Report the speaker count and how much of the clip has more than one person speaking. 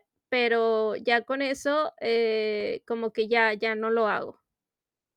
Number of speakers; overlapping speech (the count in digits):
1, no overlap